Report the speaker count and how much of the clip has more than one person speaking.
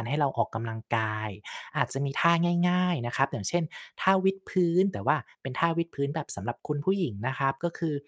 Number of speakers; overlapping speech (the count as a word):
one, no overlap